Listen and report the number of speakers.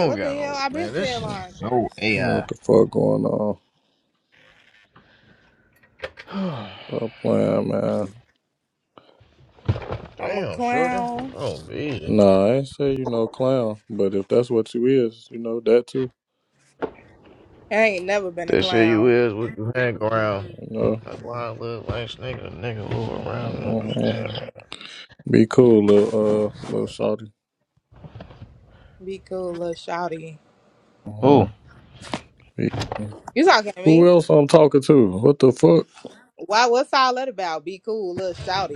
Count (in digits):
3